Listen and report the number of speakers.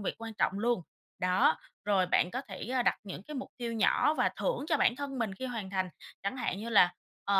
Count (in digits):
1